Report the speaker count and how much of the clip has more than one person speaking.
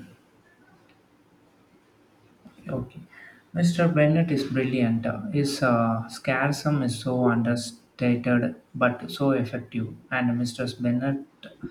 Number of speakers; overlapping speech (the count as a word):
one, no overlap